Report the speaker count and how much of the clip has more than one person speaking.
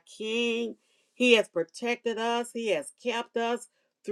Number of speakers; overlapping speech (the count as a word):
one, no overlap